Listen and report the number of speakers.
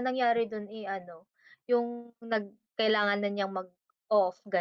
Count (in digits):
1